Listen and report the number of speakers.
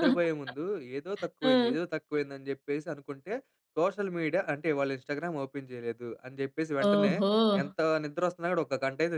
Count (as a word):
two